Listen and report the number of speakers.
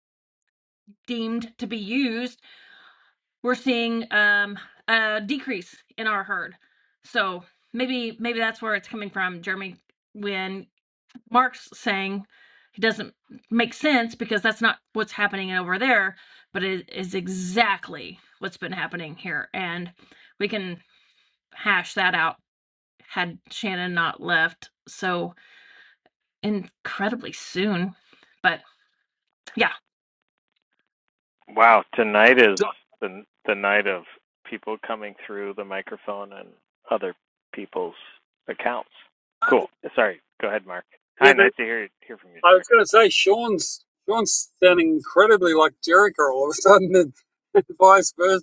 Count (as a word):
three